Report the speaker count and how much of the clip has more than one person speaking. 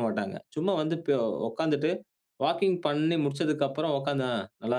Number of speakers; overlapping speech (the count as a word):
one, no overlap